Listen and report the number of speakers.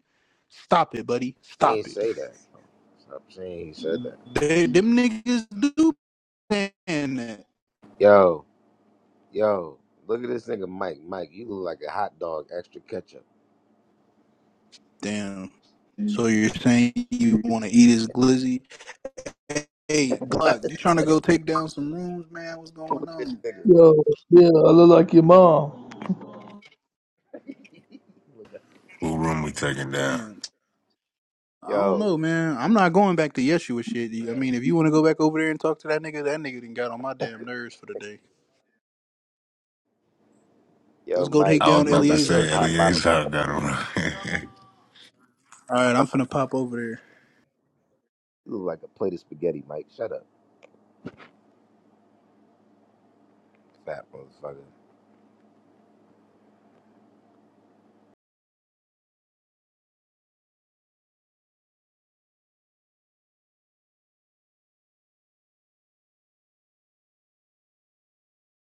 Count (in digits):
4